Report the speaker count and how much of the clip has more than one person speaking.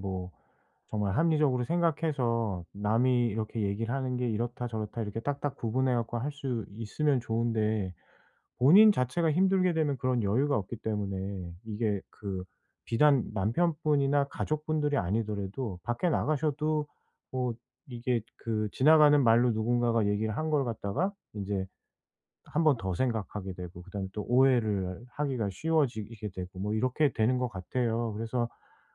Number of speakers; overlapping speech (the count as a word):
one, no overlap